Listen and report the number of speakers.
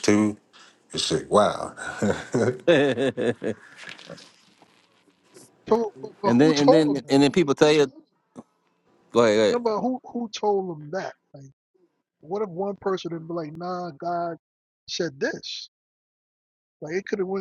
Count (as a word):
three